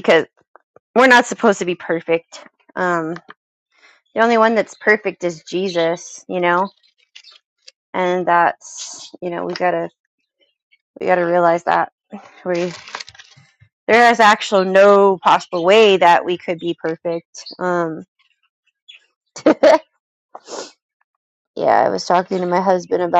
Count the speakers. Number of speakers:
1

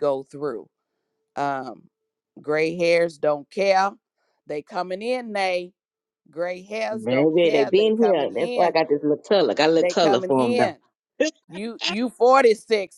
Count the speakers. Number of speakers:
2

